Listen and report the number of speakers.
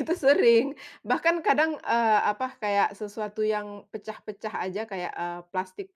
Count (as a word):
one